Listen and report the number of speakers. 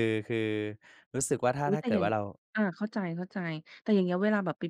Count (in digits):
2